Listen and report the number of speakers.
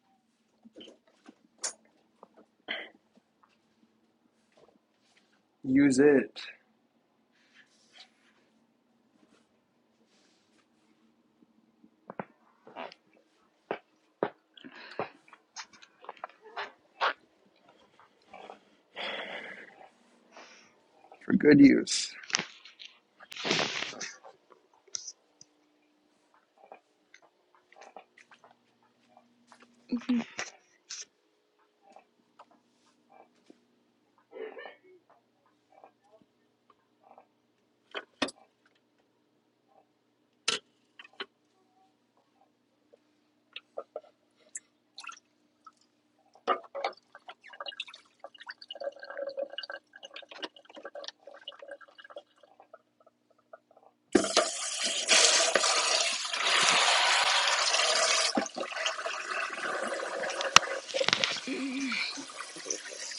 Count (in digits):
2